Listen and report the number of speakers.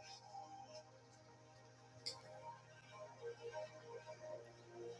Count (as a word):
zero